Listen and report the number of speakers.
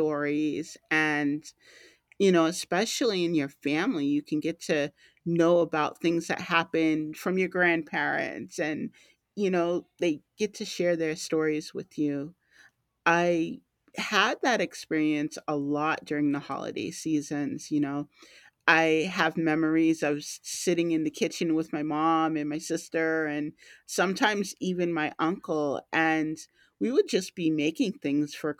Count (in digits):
1